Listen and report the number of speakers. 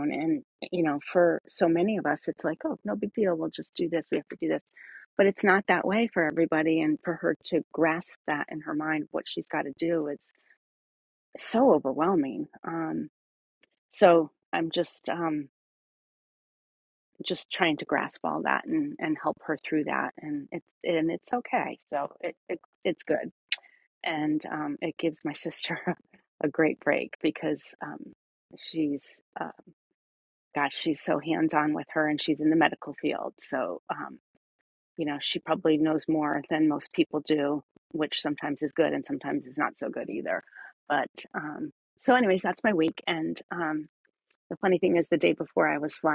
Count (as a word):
one